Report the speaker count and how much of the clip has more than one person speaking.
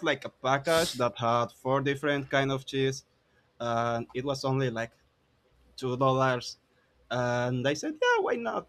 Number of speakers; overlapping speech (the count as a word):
one, no overlap